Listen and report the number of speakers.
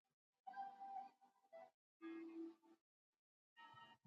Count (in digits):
0